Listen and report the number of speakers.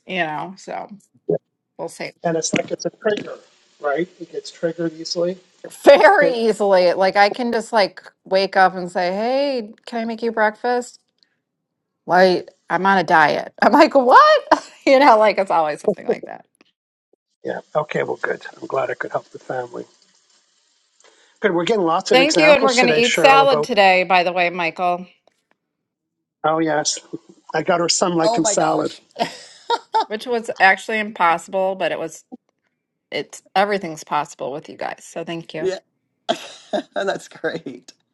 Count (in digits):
3